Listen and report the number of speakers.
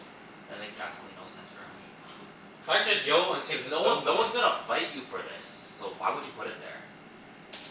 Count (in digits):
2